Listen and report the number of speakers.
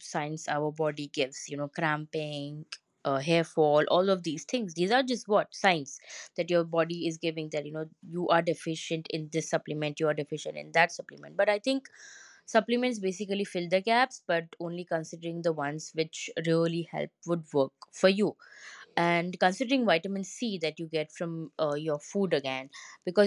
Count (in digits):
1